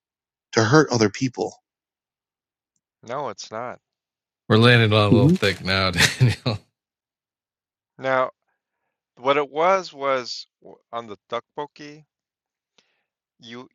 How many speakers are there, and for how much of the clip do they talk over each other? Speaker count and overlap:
3, about 2%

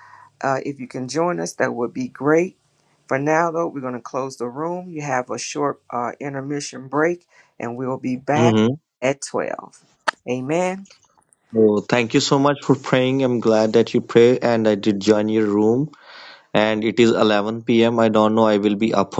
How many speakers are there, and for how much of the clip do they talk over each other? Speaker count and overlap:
2, about 1%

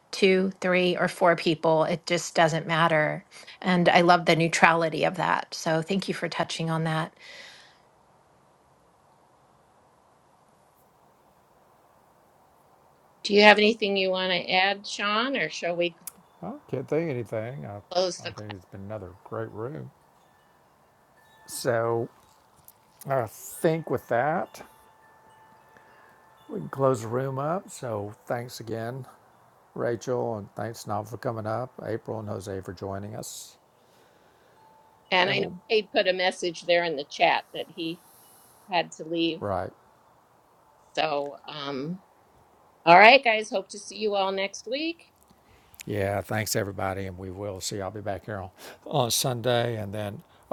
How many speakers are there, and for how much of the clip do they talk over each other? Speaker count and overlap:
3, about 1%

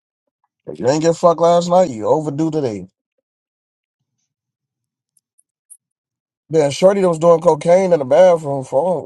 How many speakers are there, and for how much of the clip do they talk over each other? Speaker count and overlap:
1, no overlap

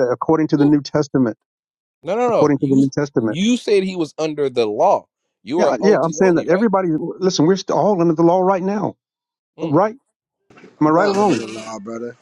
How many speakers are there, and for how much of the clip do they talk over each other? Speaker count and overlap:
3, about 21%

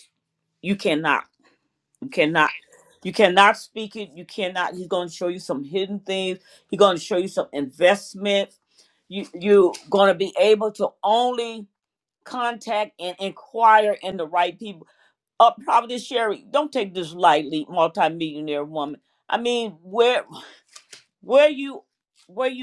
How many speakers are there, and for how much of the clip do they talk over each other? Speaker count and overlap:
1, no overlap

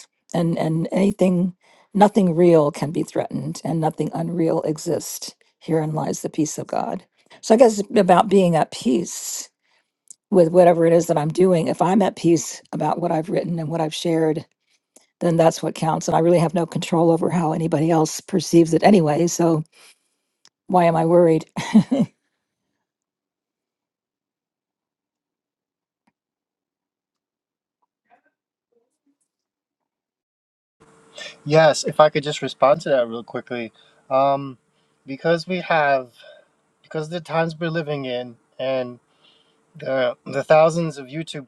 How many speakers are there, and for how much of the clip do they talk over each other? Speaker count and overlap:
2, no overlap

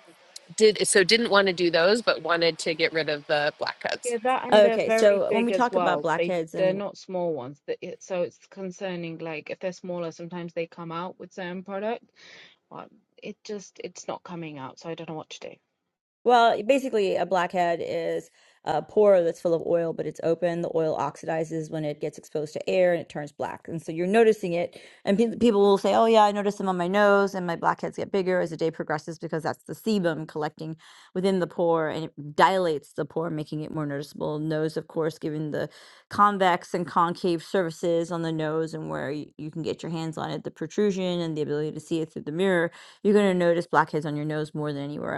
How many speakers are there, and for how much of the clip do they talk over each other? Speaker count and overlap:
3, about 5%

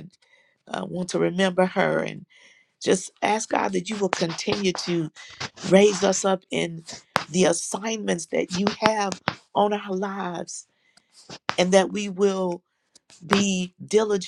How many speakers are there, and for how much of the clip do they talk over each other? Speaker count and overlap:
1, no overlap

